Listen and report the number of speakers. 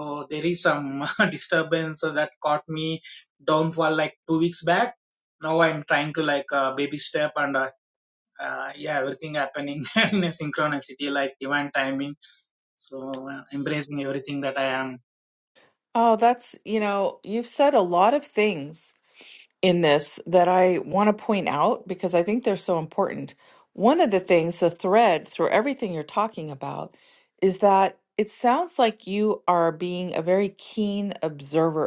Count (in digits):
2